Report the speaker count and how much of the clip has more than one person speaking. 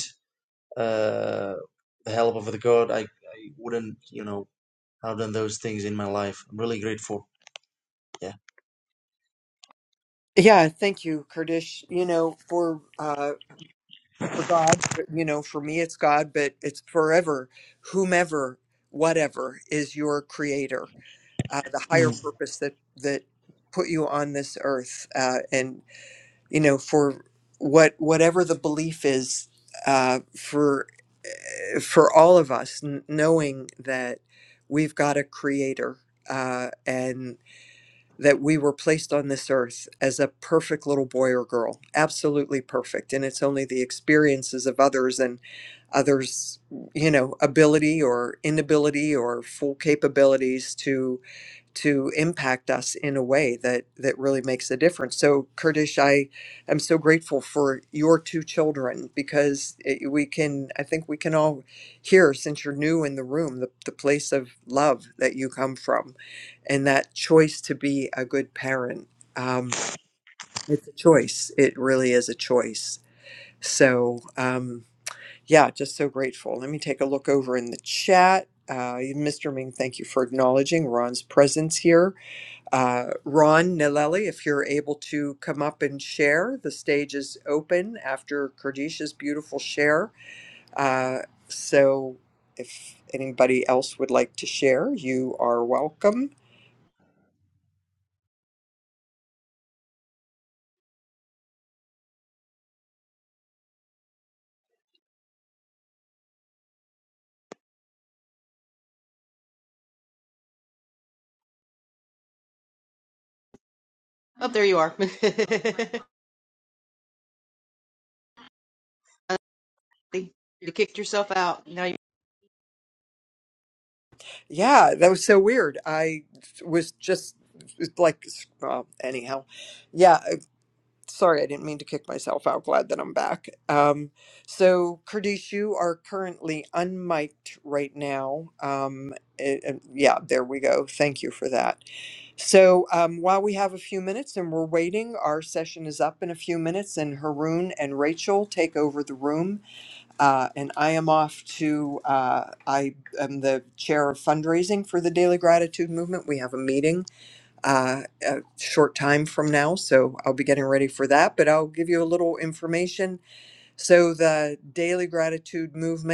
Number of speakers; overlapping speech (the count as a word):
three, under 1%